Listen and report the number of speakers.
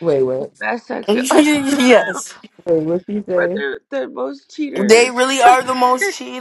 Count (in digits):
3